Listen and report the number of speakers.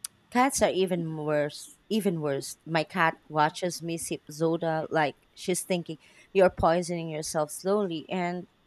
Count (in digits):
1